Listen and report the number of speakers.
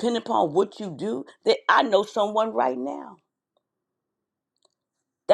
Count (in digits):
1